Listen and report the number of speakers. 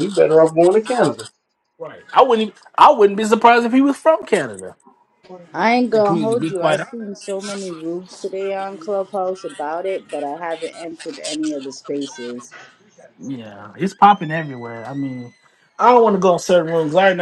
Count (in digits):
3